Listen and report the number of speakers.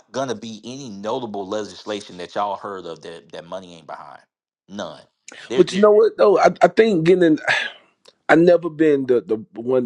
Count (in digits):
2